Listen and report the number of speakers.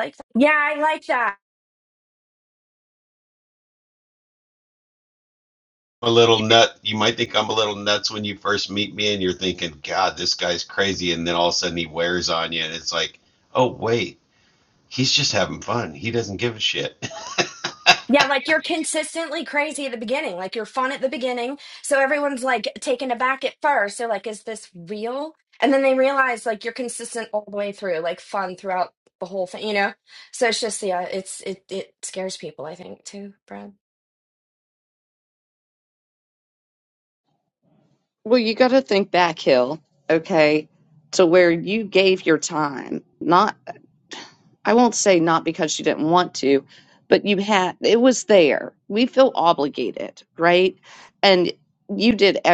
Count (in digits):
3